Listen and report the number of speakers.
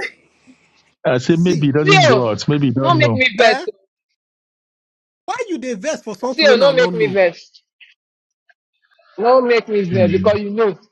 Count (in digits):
3